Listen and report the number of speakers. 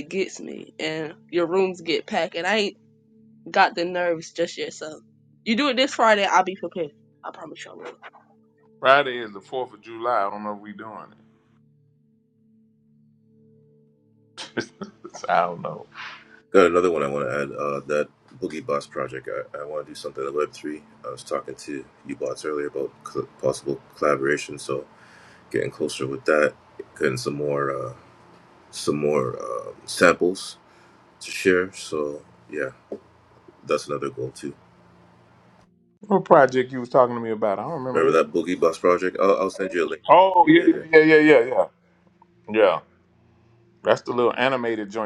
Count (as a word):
three